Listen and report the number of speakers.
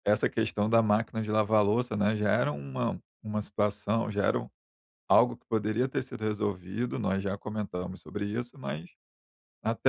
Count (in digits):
1